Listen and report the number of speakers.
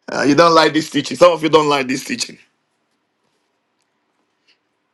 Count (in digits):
1